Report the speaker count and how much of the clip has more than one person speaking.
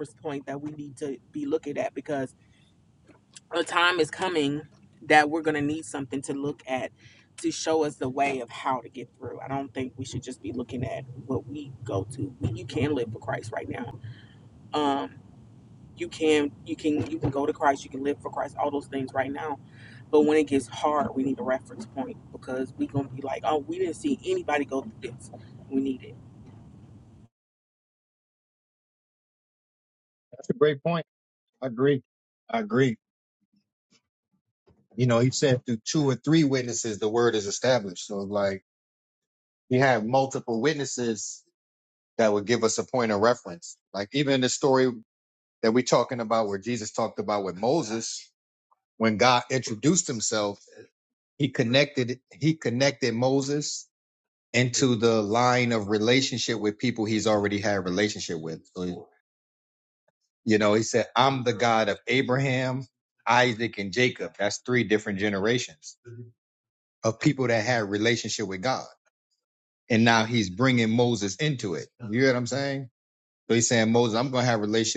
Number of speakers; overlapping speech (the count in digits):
2, no overlap